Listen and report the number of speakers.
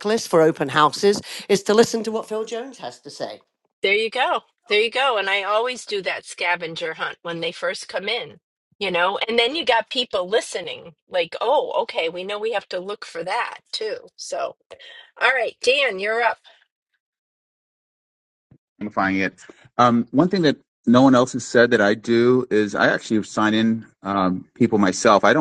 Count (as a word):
three